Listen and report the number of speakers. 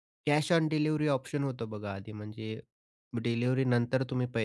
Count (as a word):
one